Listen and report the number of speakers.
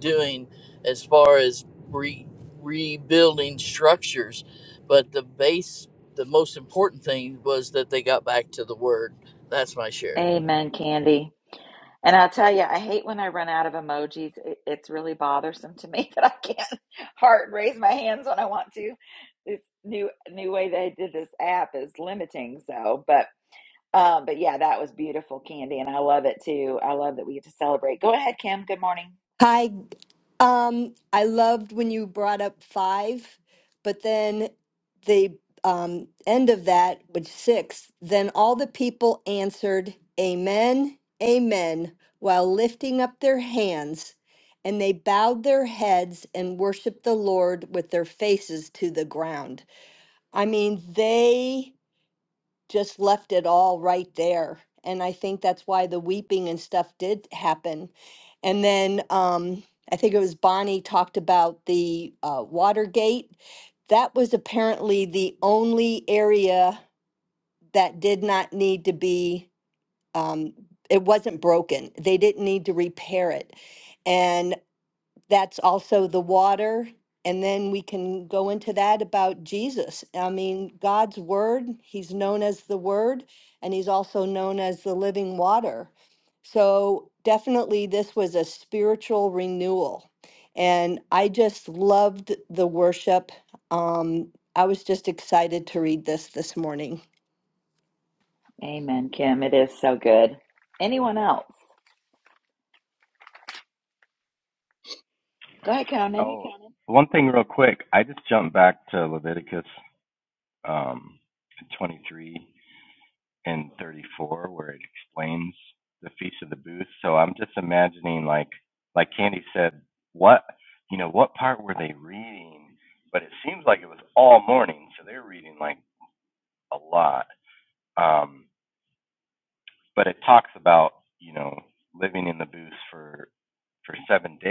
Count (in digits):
4